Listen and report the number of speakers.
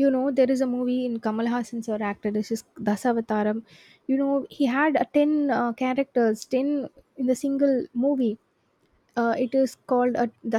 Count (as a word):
one